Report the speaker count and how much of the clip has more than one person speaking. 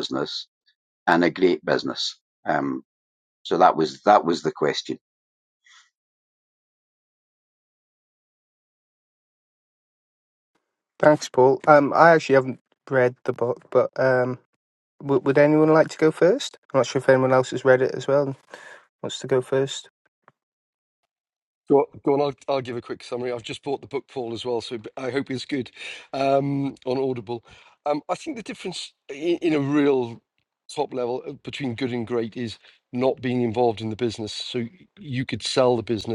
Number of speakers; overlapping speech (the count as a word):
three, no overlap